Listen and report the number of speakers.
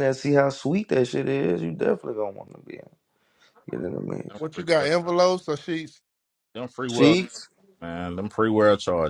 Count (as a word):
three